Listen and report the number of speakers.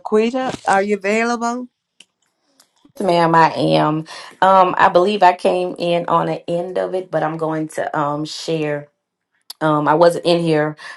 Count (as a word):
two